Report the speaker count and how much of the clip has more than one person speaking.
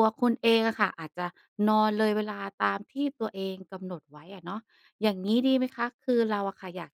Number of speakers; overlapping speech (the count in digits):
1, no overlap